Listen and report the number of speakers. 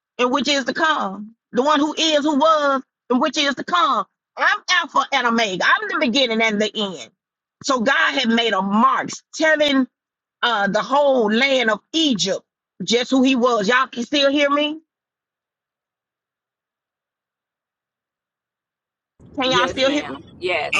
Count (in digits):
2